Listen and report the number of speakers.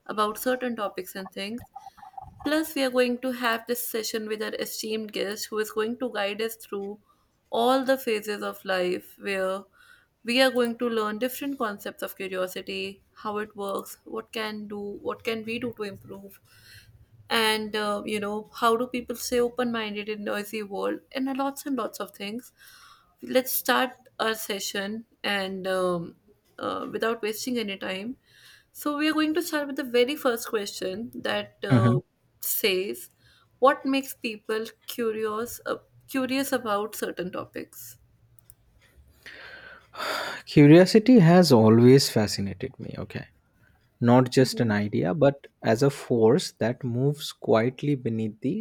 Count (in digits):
2